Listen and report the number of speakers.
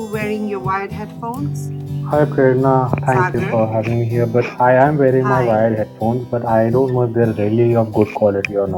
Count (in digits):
2